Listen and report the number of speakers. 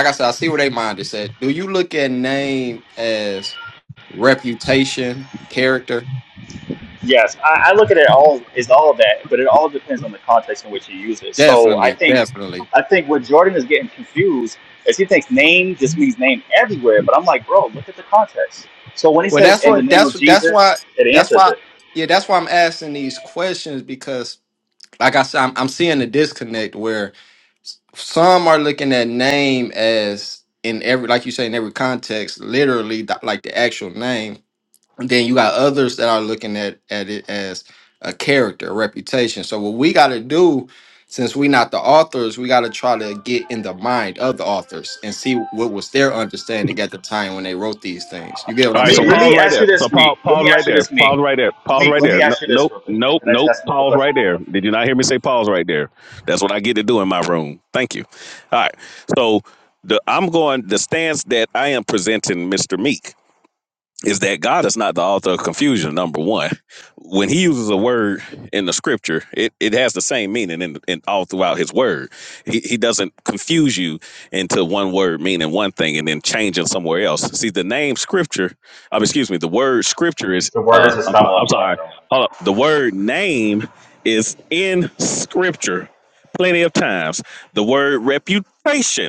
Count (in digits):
3